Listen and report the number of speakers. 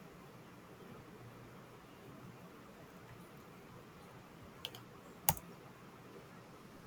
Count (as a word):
zero